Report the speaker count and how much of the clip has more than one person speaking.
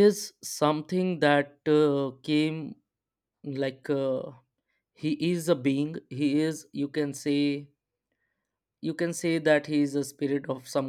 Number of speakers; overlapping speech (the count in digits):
1, no overlap